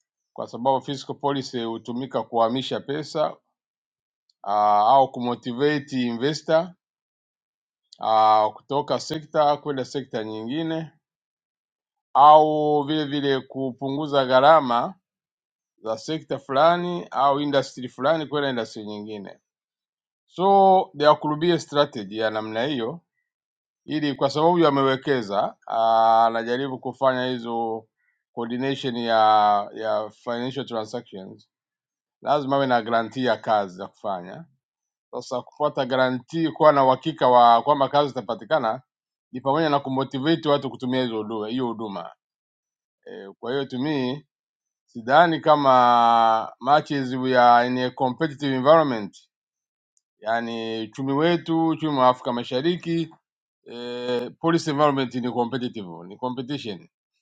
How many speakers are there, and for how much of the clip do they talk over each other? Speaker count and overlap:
one, no overlap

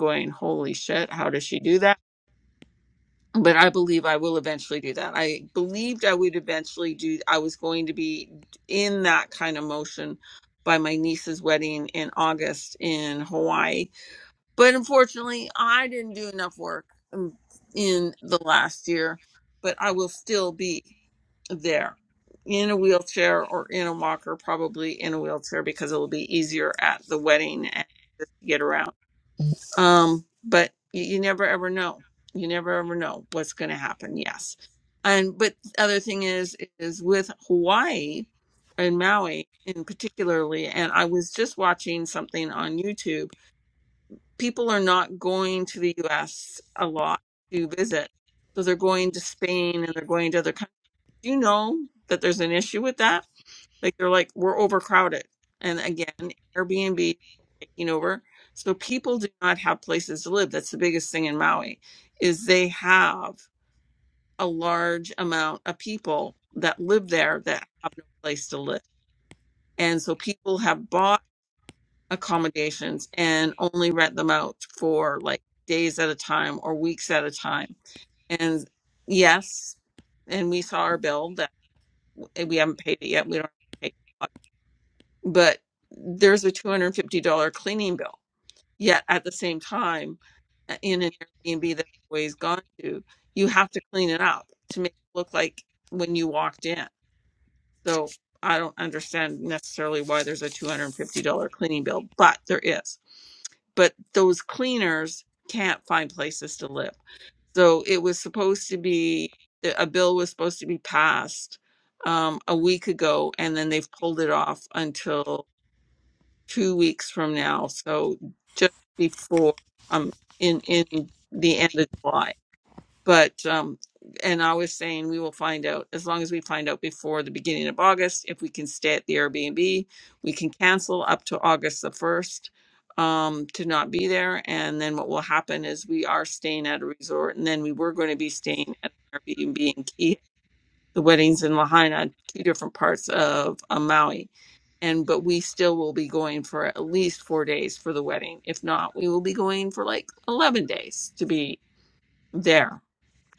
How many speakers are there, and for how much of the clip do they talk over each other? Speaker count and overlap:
one, no overlap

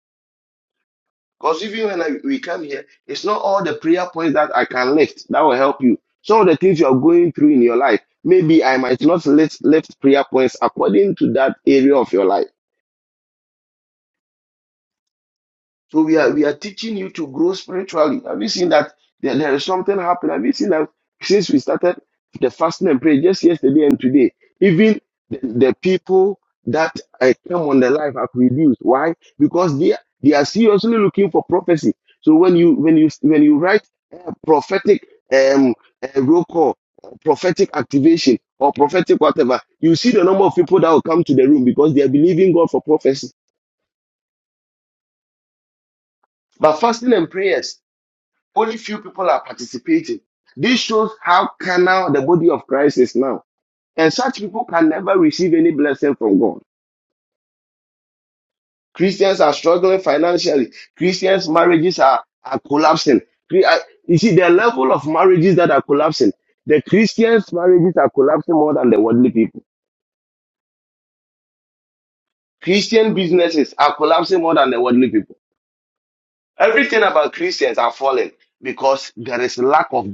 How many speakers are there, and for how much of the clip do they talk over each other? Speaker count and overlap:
one, no overlap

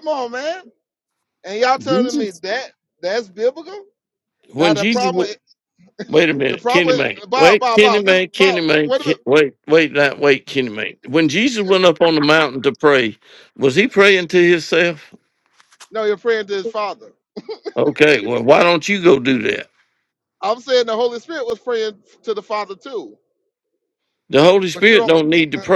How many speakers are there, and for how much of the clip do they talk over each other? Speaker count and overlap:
two, about 17%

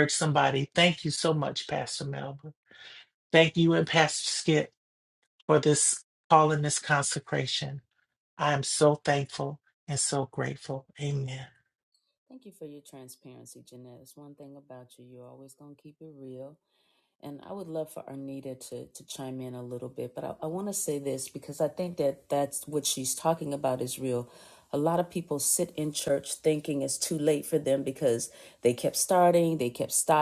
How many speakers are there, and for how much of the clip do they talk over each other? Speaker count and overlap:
two, no overlap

